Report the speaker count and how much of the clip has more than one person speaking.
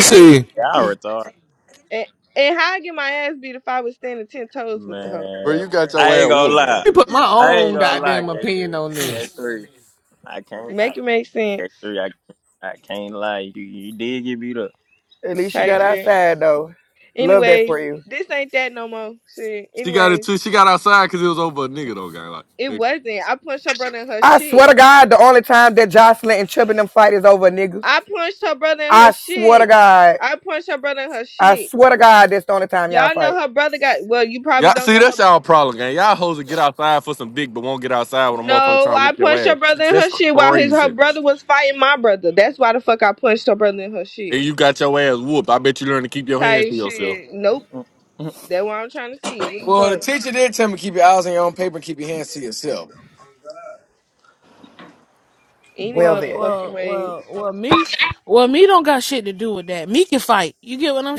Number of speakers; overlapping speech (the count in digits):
7, about 21%